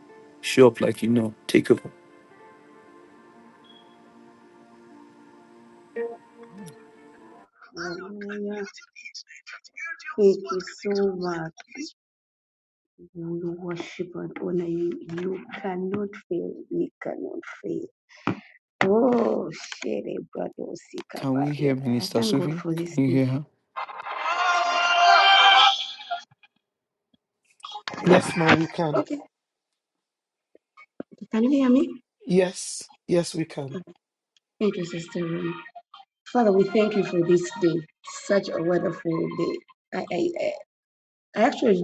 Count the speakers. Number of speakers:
three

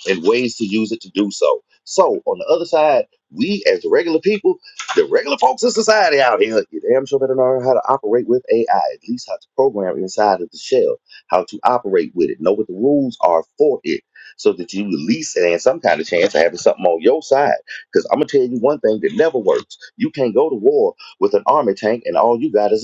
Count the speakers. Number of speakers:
one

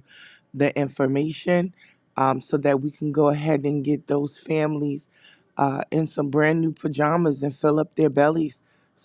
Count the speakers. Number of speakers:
one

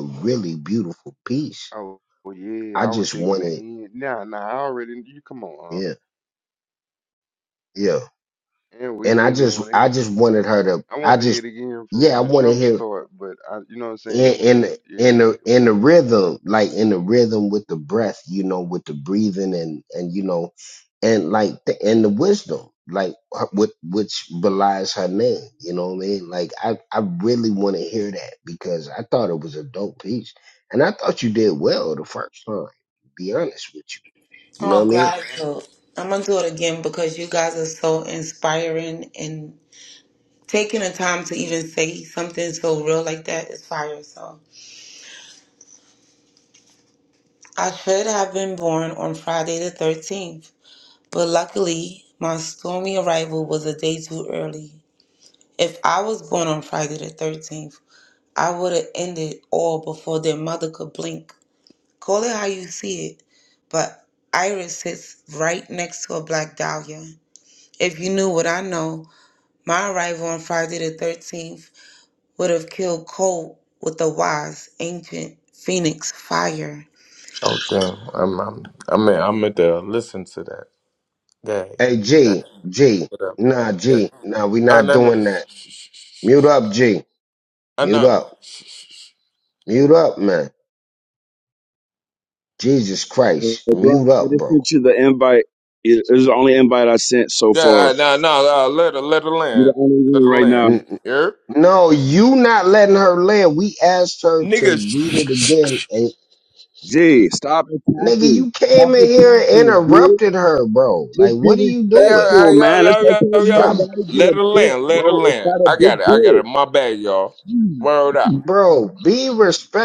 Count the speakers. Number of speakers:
five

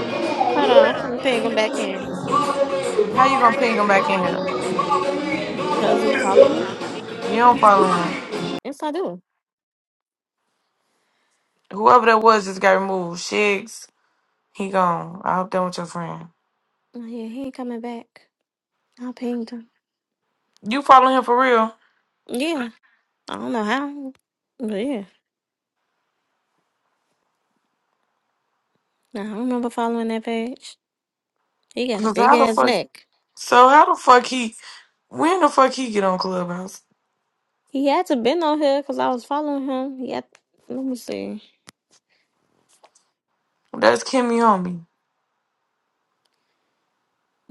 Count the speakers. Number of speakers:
two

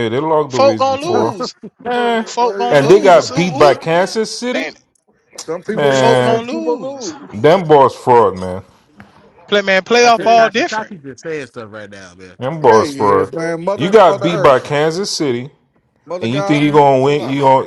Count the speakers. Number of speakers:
four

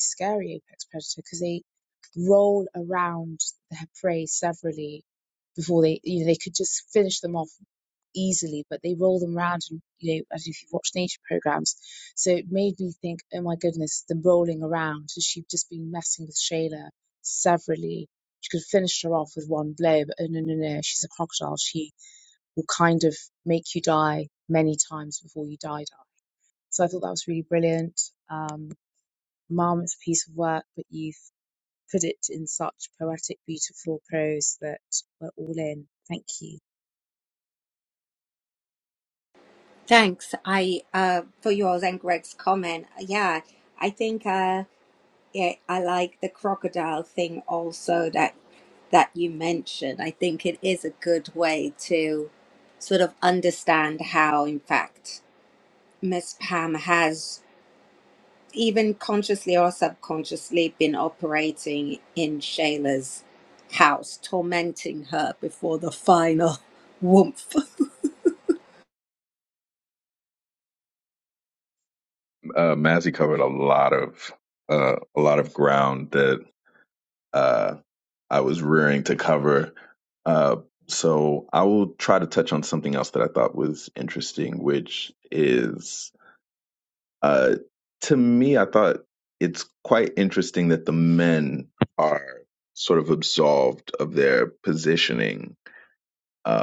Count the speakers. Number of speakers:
three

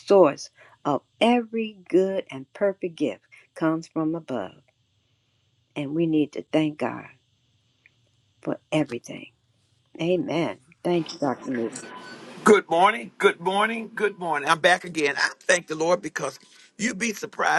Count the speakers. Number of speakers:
two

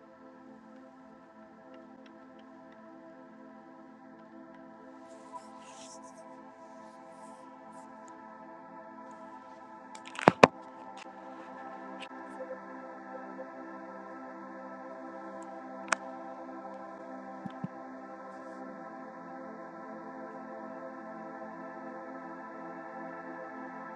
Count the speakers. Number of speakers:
zero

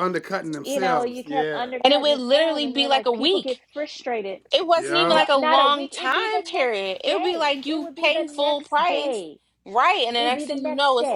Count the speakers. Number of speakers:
three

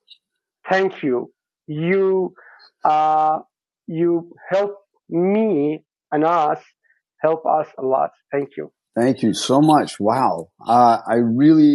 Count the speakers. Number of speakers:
two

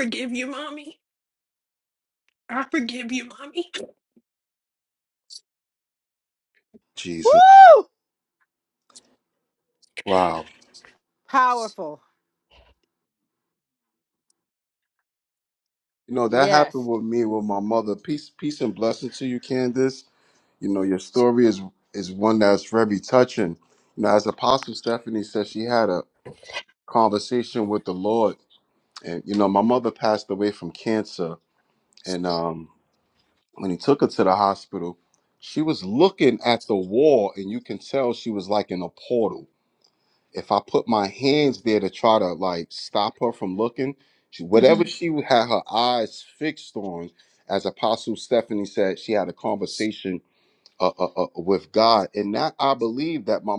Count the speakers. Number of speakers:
three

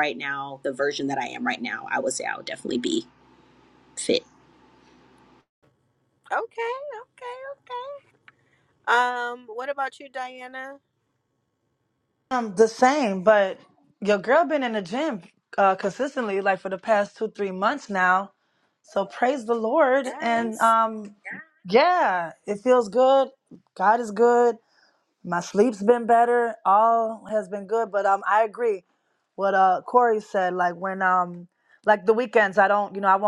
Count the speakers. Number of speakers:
three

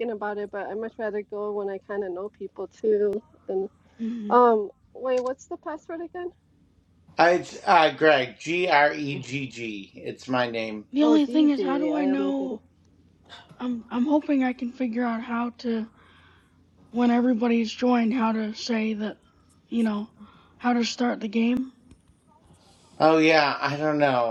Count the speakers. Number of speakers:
three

